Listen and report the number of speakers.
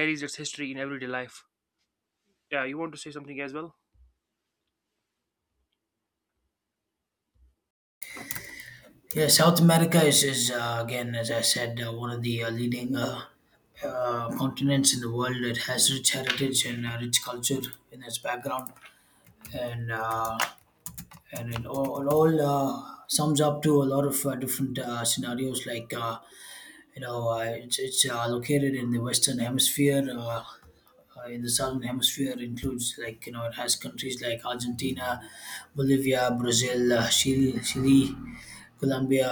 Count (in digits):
2